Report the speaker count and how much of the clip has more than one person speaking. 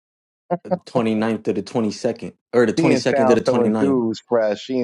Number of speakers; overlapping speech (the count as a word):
two, about 24%